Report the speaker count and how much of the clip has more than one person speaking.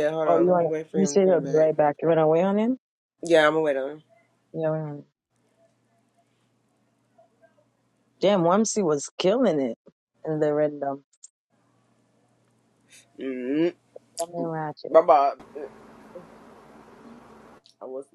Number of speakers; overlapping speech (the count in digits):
2, about 8%